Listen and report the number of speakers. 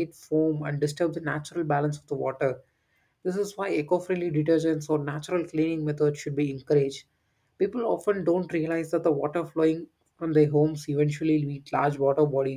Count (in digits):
1